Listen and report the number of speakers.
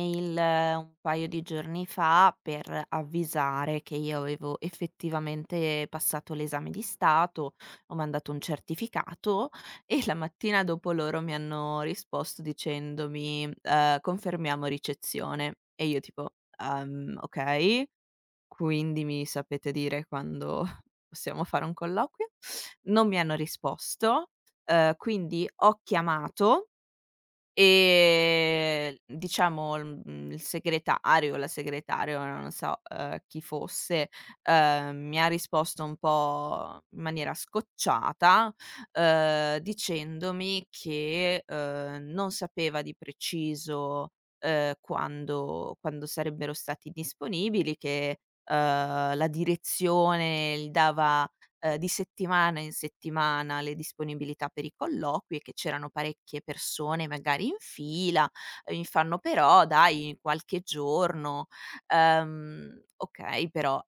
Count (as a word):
one